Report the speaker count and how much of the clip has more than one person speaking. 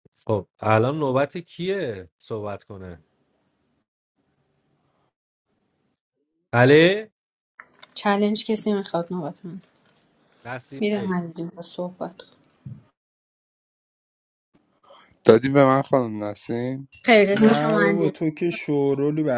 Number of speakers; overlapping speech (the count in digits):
4, about 6%